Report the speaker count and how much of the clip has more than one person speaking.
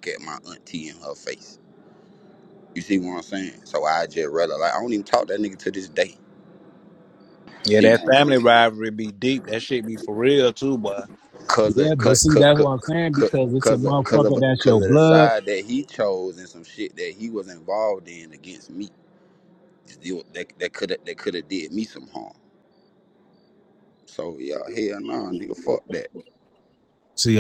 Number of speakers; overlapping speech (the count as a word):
three, about 14%